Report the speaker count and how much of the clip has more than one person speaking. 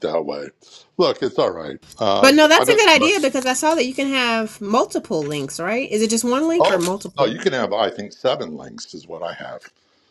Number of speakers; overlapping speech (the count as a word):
two, about 10%